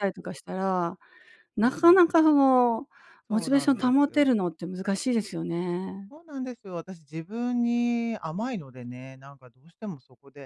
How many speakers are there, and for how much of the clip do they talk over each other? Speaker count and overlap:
2, about 14%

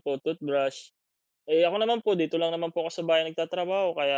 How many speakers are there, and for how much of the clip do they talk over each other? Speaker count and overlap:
1, no overlap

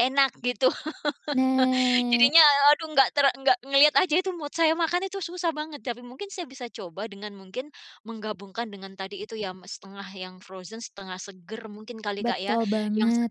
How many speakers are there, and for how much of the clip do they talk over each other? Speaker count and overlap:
2, about 8%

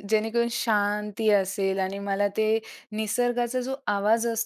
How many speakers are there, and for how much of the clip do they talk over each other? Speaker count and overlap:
1, no overlap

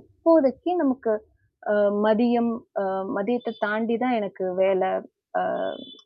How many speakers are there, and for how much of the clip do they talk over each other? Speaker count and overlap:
1, no overlap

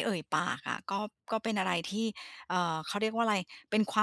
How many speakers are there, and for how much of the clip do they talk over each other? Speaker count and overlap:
1, no overlap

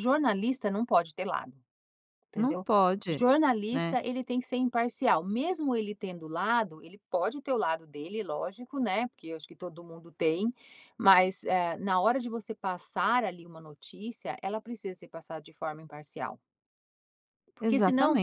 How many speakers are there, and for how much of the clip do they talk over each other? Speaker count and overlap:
2, about 7%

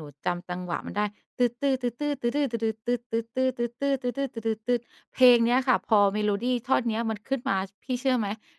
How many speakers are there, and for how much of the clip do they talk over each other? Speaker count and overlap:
1, no overlap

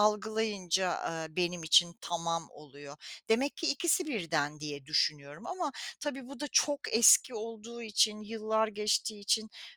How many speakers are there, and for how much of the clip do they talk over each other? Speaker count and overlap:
1, no overlap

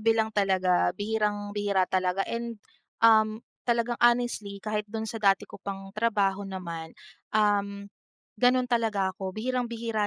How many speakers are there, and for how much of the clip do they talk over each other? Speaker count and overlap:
1, no overlap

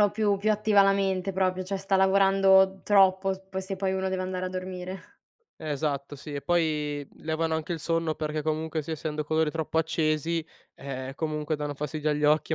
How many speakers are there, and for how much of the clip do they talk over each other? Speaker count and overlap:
2, no overlap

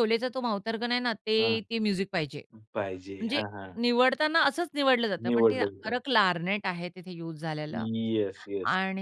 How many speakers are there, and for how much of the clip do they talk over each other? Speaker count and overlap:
2, about 15%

